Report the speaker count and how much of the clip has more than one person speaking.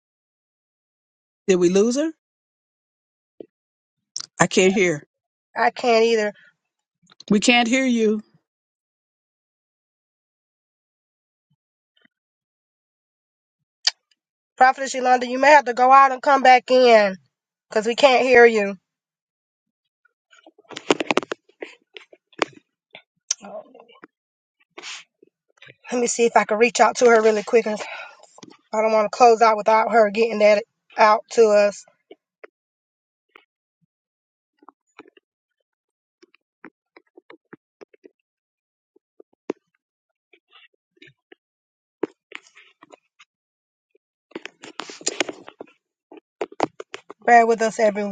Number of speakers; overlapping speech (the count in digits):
2, no overlap